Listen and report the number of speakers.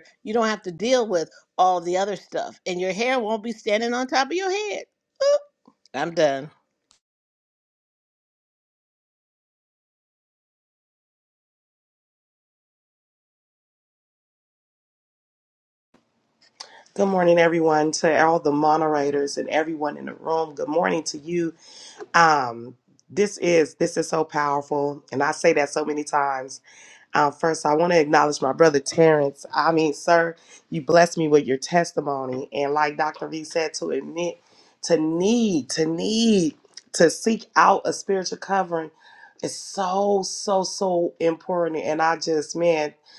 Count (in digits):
2